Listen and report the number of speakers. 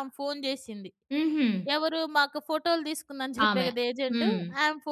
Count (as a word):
two